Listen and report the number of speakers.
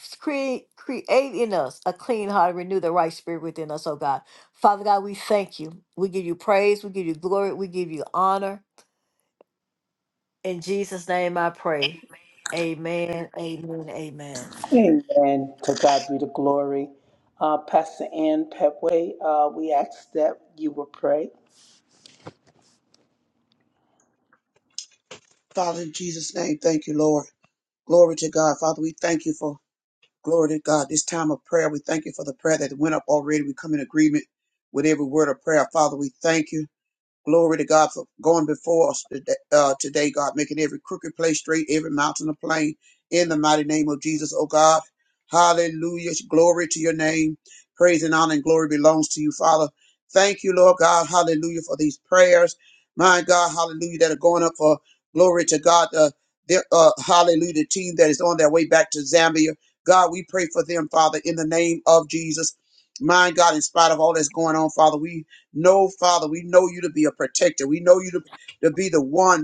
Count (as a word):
three